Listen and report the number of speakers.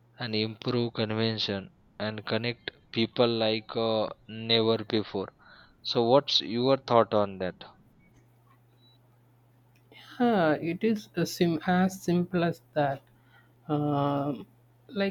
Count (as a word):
two